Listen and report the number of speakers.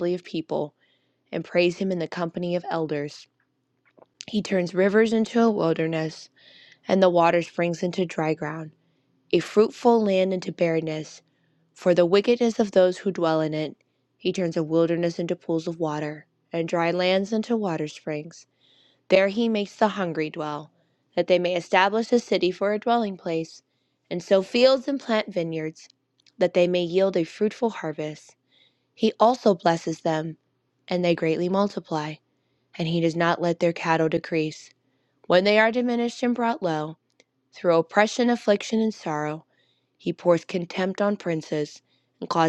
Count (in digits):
1